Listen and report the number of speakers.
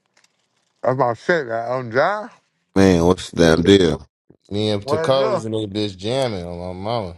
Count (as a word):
three